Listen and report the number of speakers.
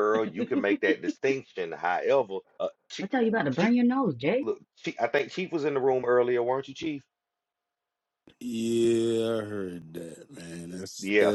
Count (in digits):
3